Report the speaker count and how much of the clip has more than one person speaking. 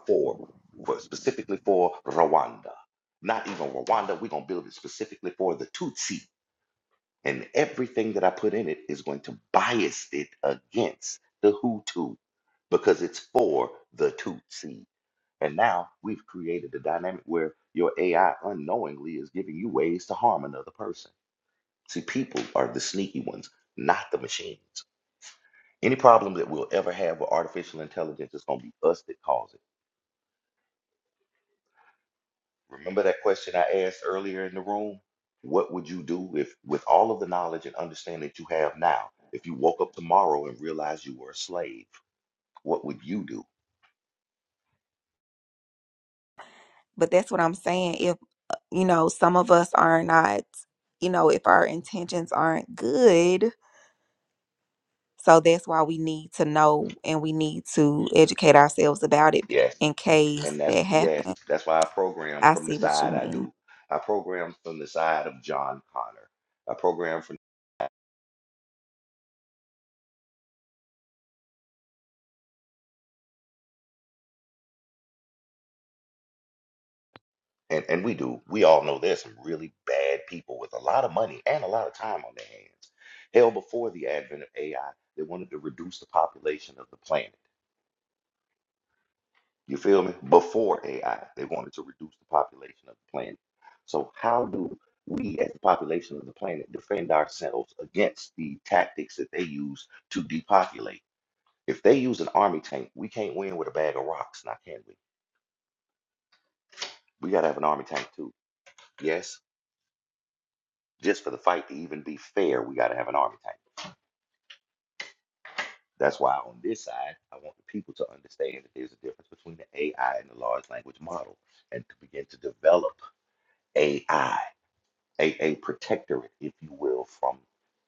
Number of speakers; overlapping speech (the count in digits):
2, about 1%